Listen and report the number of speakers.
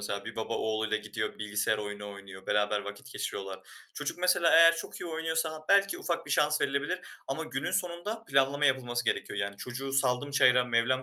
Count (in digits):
1